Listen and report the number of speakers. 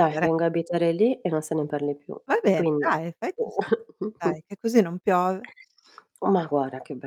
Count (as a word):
two